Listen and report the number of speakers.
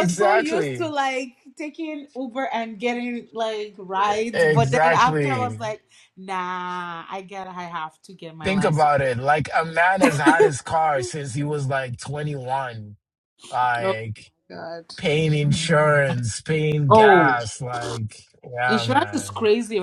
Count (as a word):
two